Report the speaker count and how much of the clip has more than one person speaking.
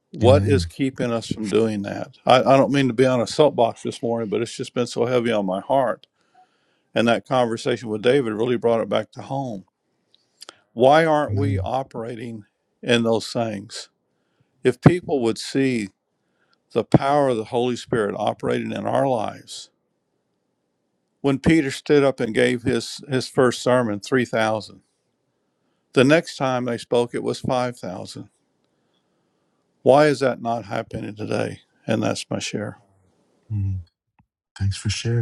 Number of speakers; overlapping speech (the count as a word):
two, about 2%